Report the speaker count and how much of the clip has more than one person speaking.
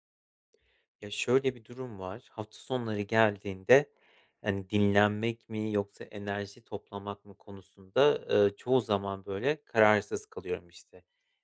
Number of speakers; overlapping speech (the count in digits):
1, no overlap